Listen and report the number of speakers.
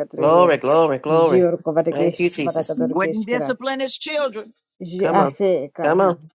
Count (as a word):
three